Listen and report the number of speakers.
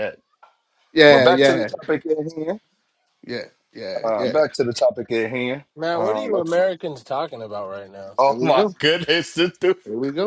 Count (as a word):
three